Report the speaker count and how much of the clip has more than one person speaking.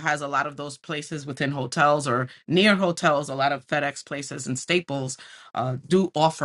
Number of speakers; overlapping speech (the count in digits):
1, no overlap